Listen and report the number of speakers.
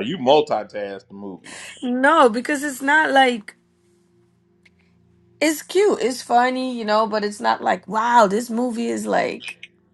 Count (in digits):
2